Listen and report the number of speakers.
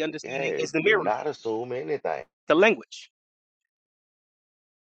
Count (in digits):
2